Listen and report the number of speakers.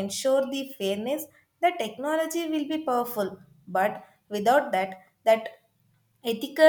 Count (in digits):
1